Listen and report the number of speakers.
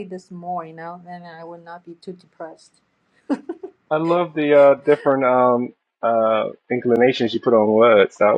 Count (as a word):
two